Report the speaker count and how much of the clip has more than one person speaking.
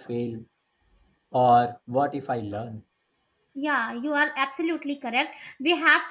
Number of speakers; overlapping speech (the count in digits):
2, no overlap